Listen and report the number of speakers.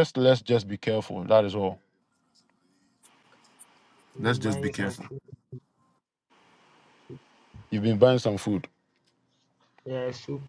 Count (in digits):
2